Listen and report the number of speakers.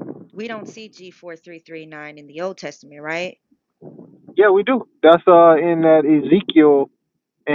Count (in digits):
2